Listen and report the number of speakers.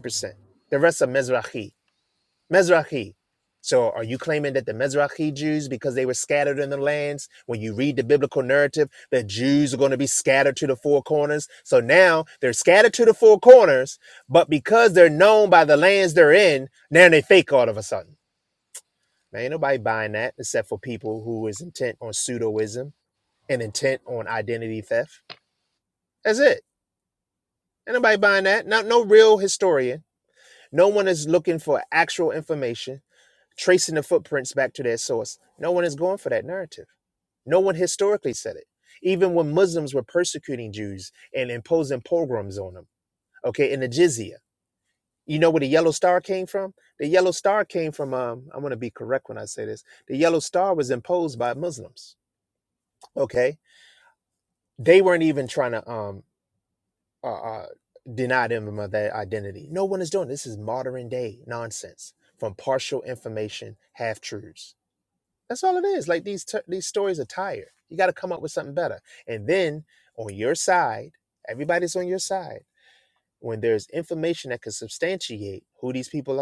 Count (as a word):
one